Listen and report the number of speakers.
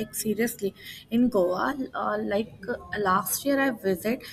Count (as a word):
one